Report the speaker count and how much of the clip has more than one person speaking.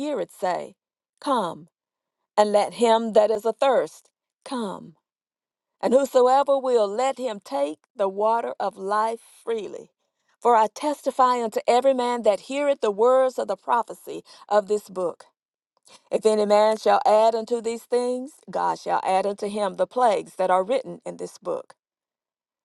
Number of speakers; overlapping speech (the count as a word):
one, no overlap